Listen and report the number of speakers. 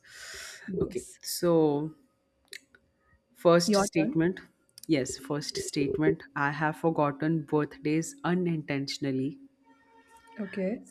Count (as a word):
two